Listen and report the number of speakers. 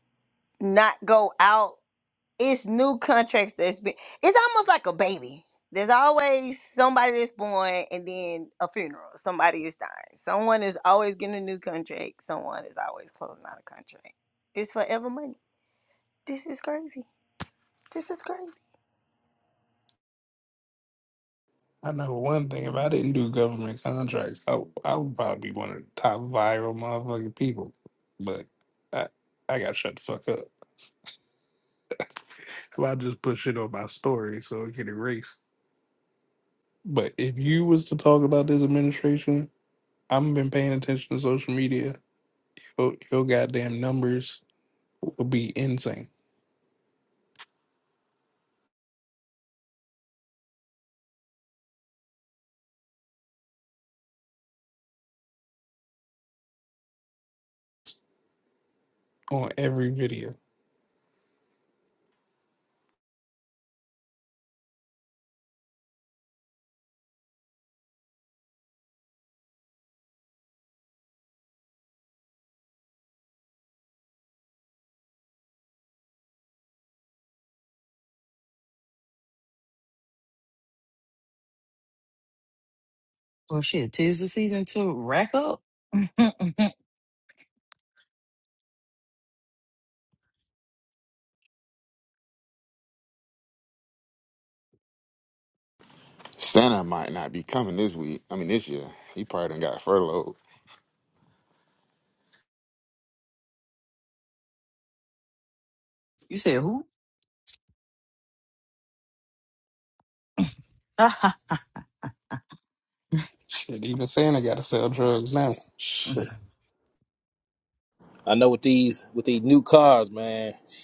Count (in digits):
5